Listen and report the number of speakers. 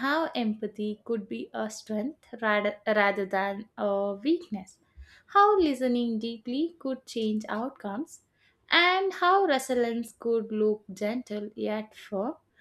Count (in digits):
1